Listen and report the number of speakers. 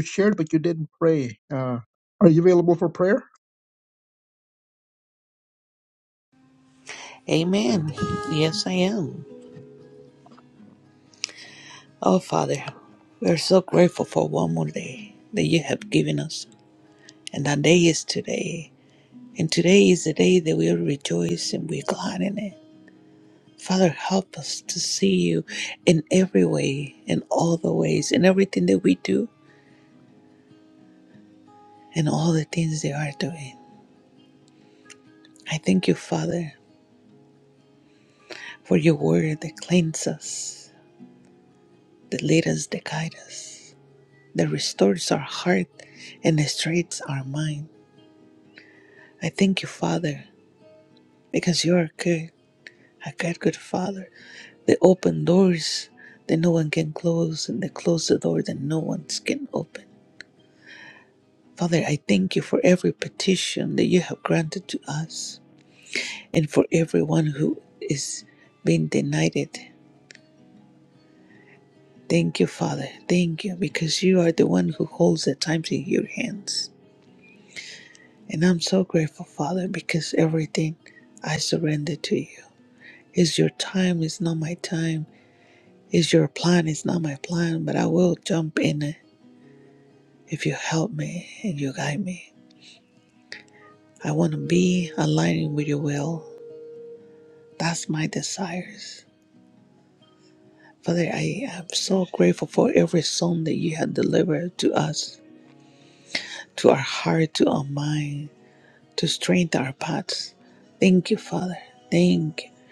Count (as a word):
two